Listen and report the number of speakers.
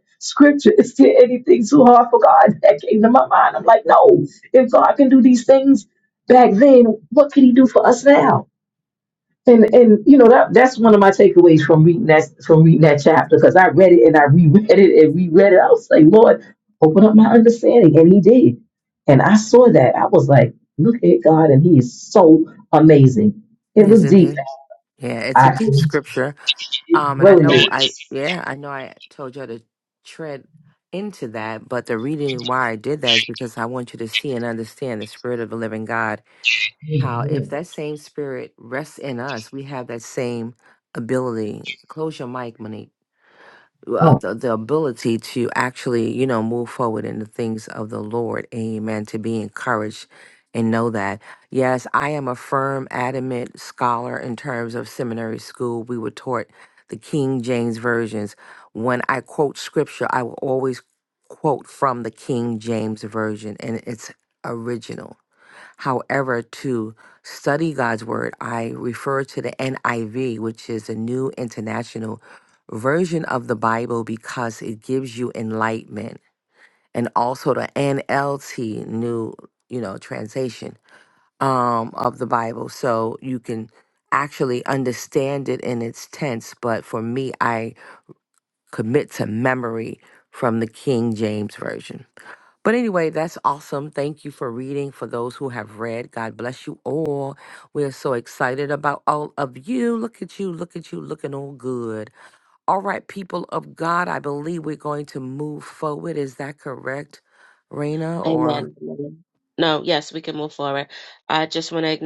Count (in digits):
3